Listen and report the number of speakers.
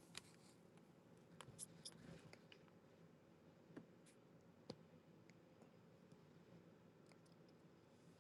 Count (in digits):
0